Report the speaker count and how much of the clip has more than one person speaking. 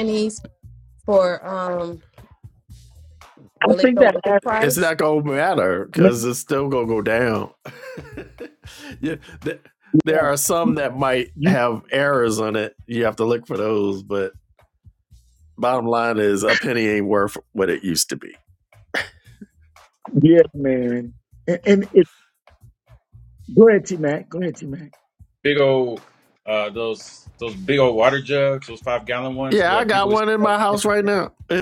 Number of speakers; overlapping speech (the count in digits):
4, about 8%